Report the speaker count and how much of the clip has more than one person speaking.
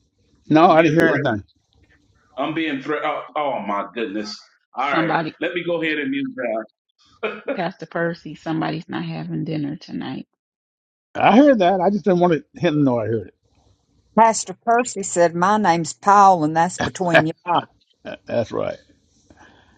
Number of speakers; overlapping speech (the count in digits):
4, about 6%